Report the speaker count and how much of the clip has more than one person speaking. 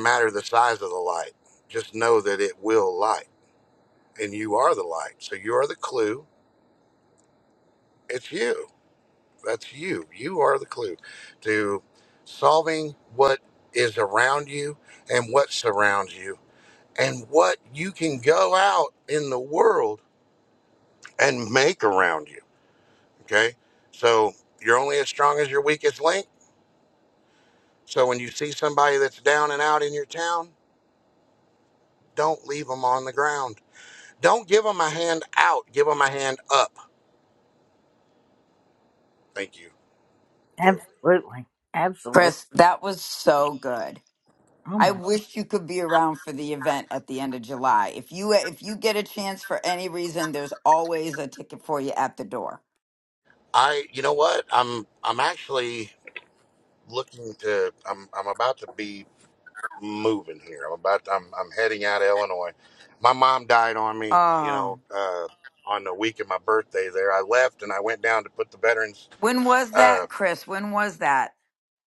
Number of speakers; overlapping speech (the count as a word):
three, about 2%